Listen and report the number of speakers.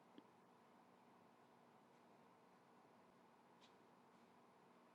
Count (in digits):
0